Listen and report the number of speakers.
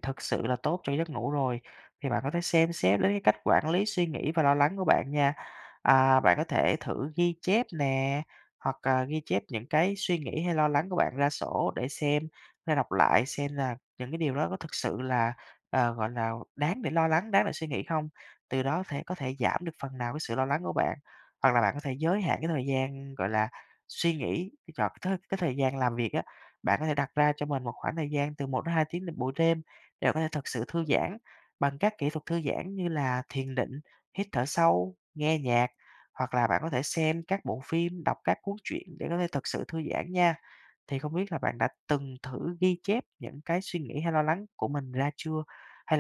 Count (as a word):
one